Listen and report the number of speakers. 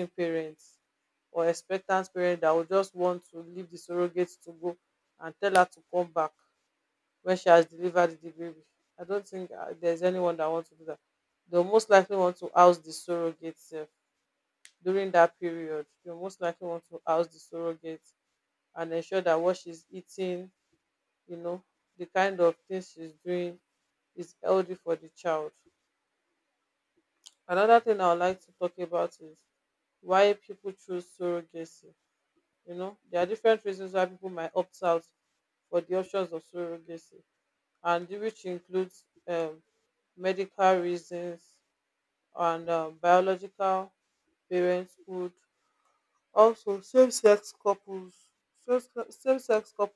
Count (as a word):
one